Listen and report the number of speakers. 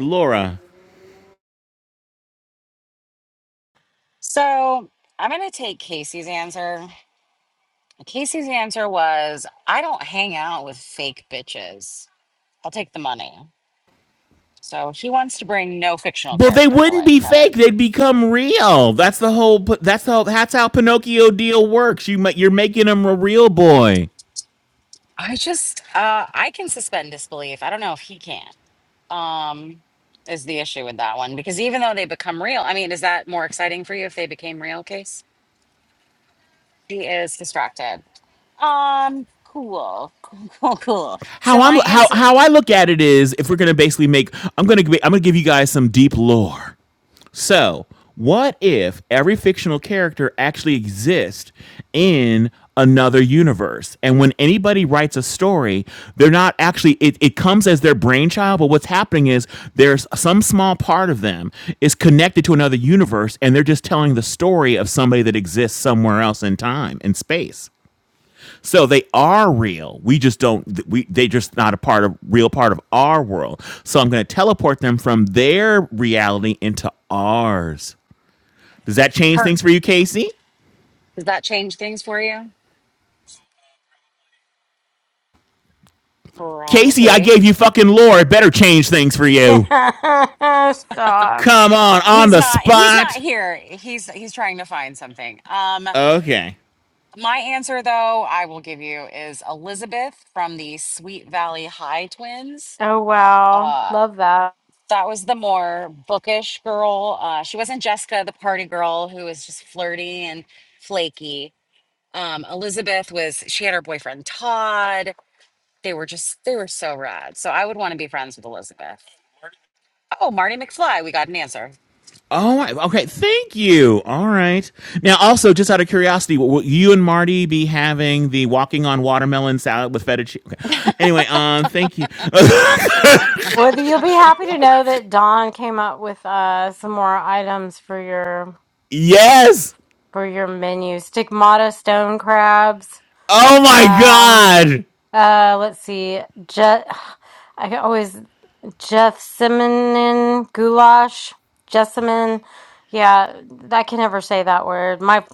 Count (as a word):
three